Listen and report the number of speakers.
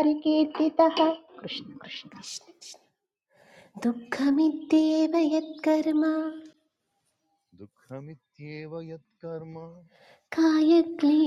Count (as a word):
three